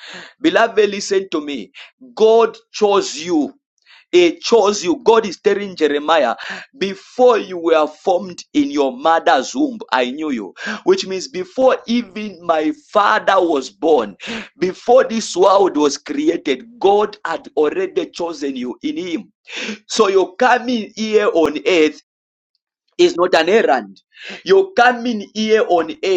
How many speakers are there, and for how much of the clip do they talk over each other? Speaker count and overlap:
1, no overlap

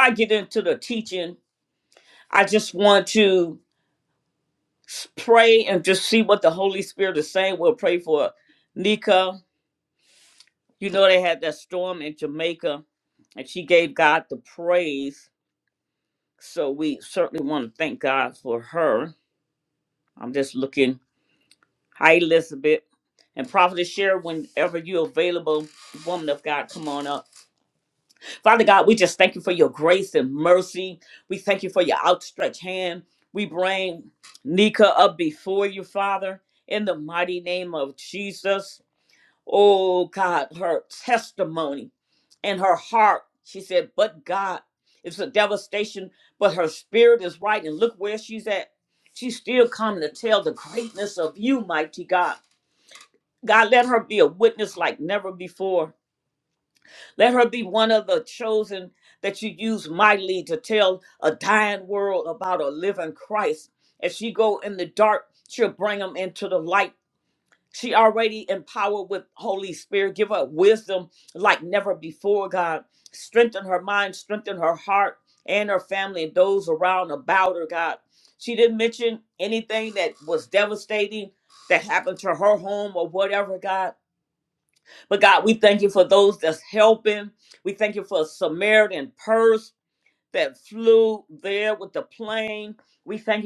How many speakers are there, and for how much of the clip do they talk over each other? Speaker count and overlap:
1, no overlap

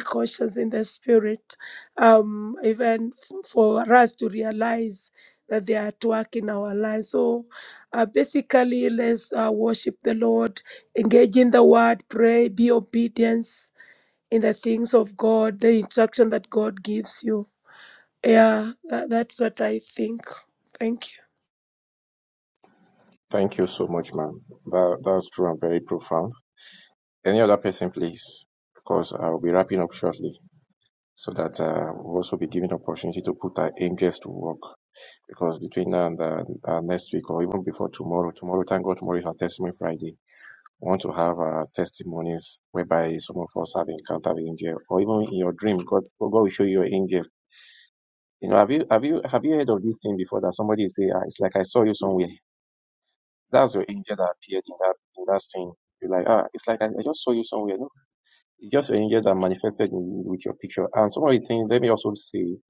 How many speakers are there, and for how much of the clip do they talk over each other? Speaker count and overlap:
2, no overlap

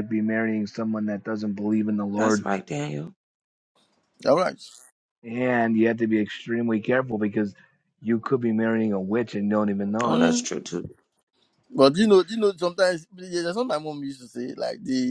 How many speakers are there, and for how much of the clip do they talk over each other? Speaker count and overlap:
3, about 5%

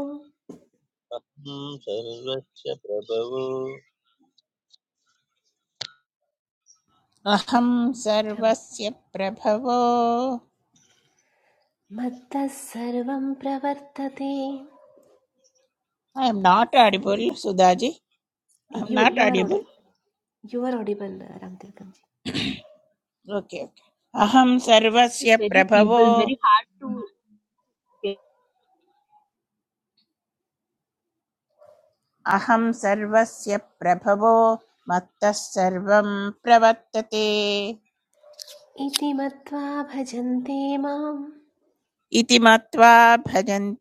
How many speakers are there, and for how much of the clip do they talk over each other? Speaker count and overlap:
4, about 4%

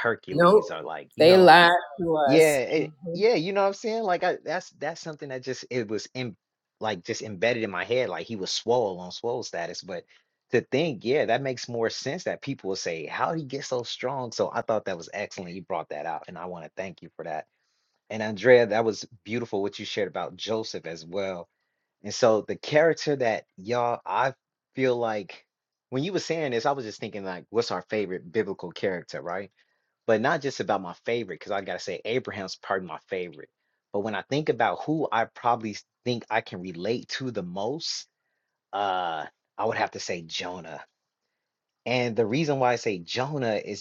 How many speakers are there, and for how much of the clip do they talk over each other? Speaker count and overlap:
2, about 4%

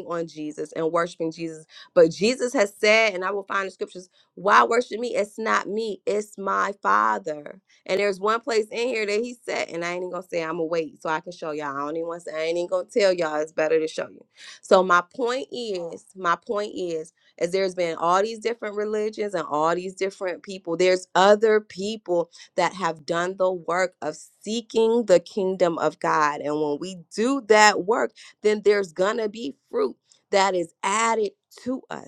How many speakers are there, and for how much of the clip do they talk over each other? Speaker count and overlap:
1, no overlap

